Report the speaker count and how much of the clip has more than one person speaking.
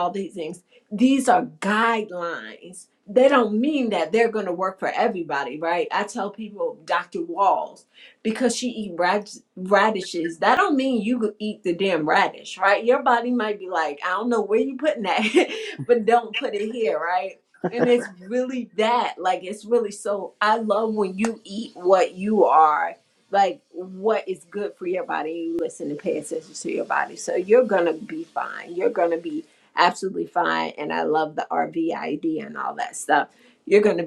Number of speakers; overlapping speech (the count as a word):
one, no overlap